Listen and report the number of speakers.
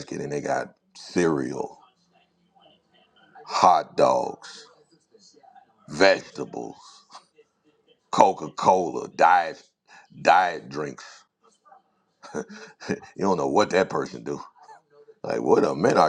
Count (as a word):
one